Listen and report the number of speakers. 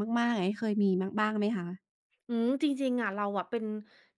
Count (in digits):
2